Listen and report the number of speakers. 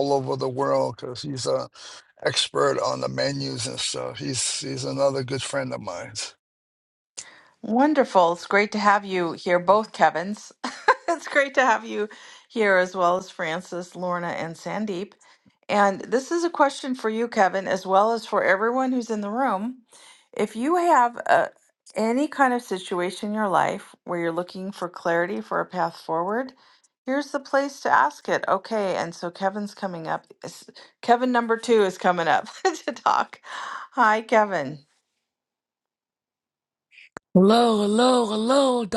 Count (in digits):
3